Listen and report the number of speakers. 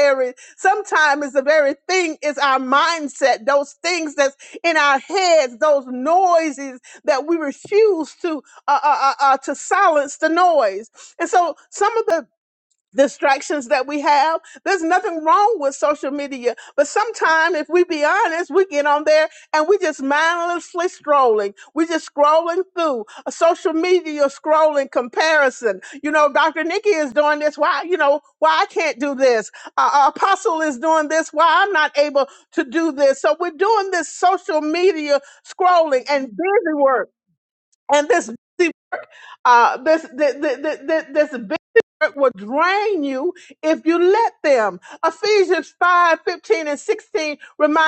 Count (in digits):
1